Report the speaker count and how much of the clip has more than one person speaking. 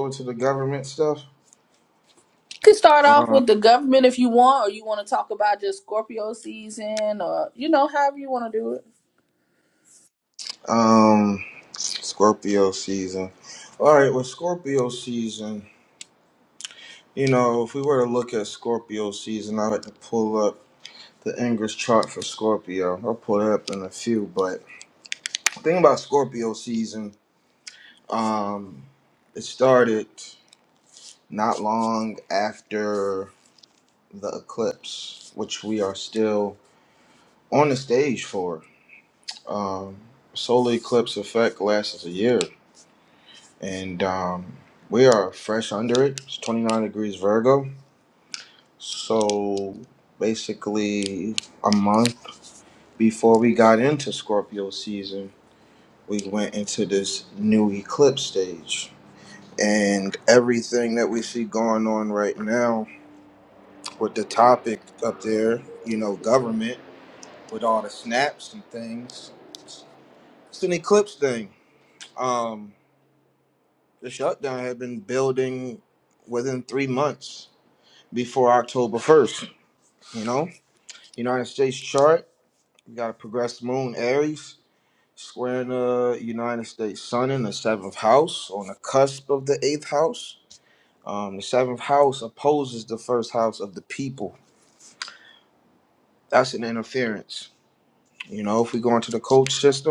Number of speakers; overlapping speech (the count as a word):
two, under 1%